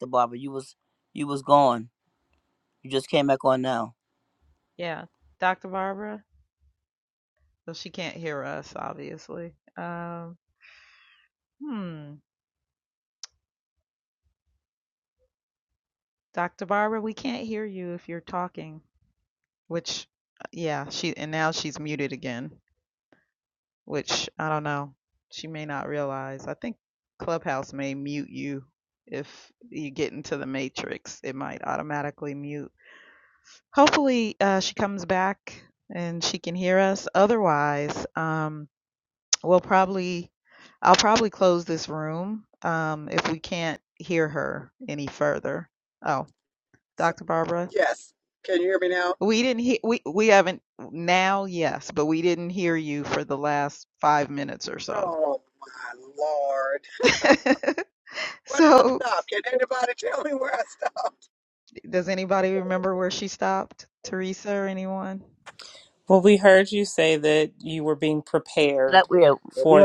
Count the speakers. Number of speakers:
4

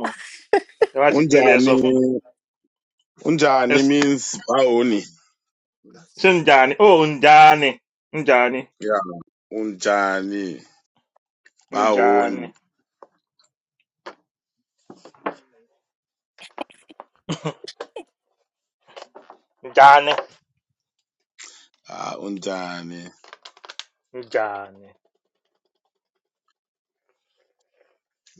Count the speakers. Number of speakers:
2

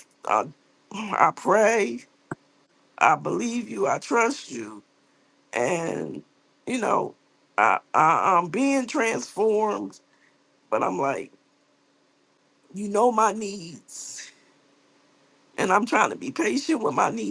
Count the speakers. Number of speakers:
1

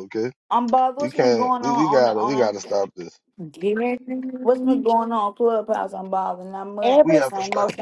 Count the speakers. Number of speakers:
3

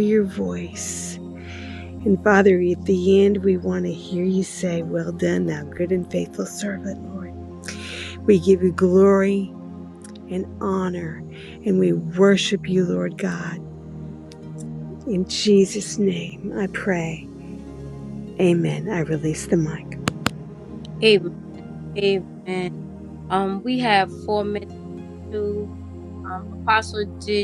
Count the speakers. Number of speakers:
2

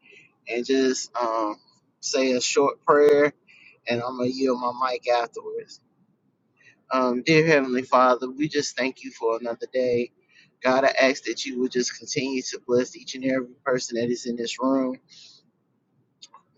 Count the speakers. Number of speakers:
1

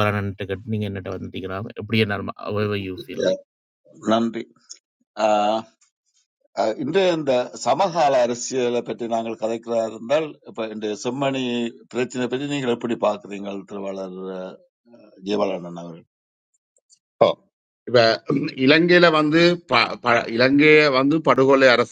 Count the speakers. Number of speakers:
3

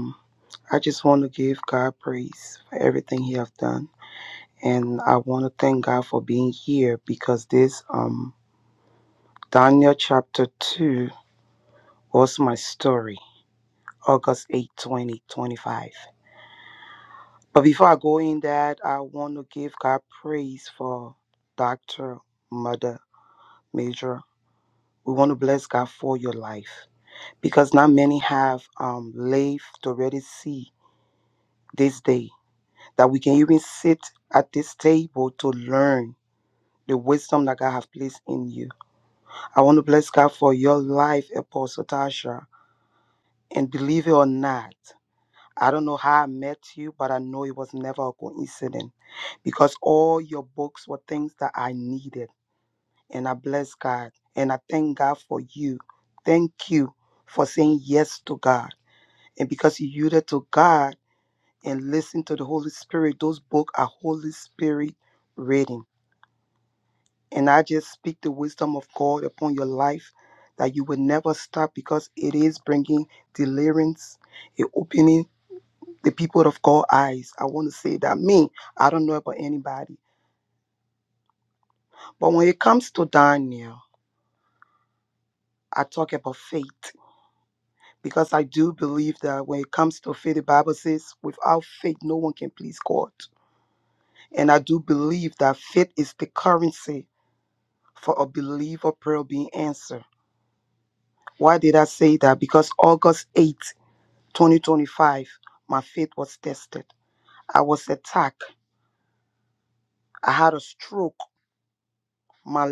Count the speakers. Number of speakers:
1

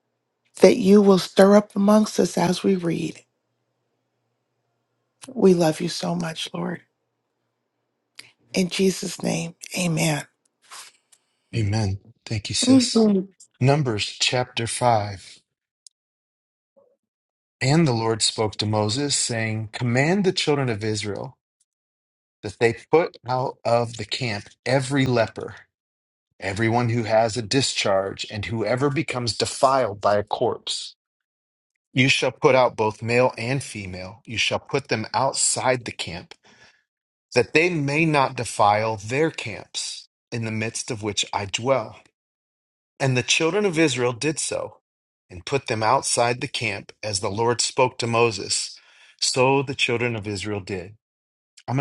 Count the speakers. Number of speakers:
2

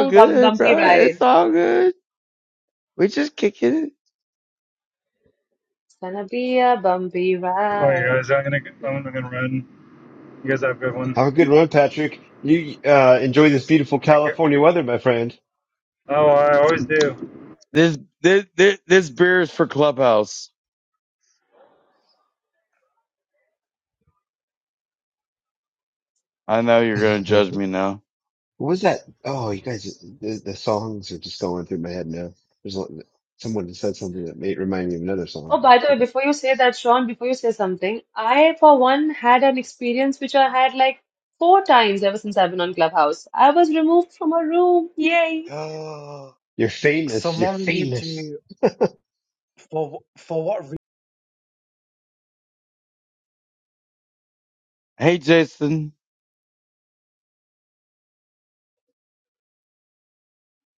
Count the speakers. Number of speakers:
5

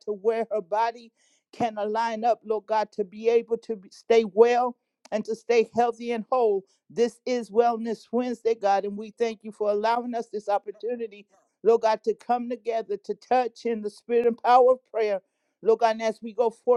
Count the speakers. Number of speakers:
1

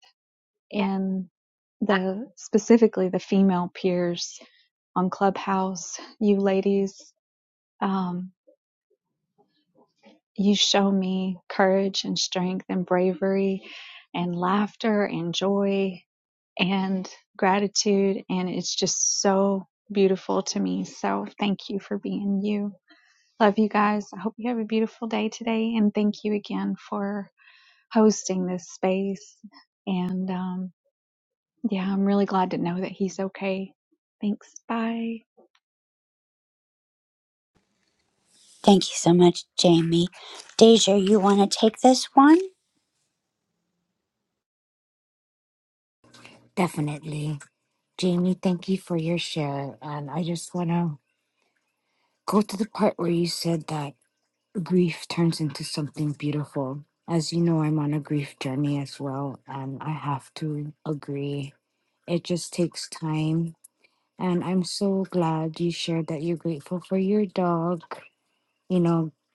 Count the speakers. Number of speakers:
3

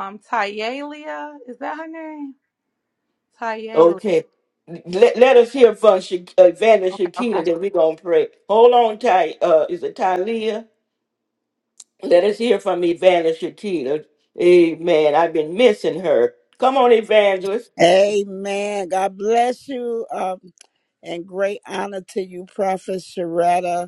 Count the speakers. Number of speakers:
3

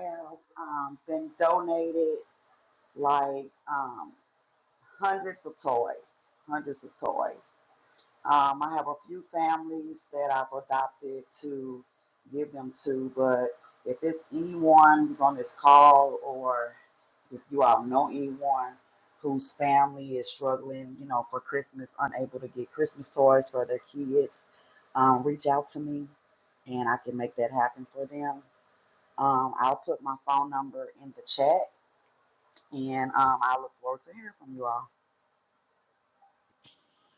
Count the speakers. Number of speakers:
1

